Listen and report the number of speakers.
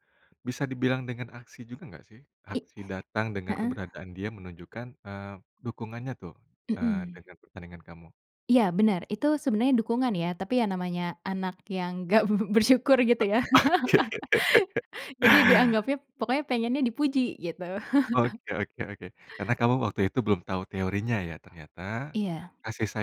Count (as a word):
two